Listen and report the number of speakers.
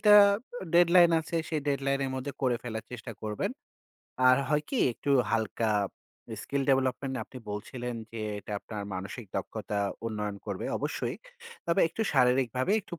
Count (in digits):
1